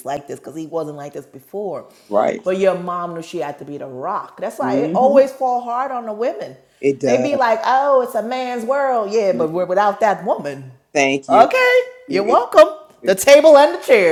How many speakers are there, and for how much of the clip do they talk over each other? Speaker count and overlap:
two, about 12%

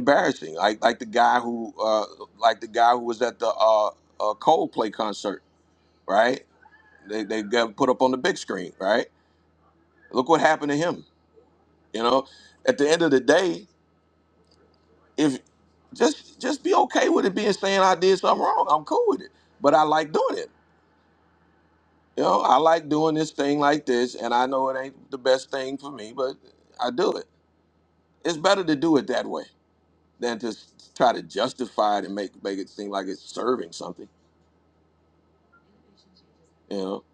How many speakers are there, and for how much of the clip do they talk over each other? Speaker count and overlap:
one, no overlap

